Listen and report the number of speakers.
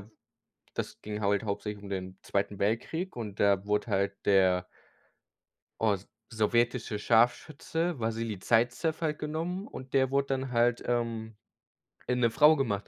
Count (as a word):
one